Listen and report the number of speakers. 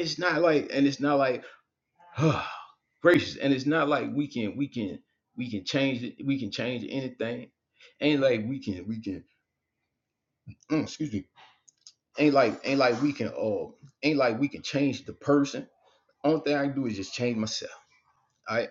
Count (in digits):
1